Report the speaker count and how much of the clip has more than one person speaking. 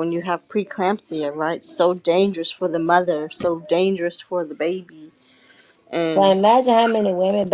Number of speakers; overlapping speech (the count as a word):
two, about 2%